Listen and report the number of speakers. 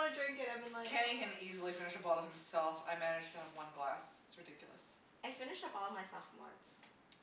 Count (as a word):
two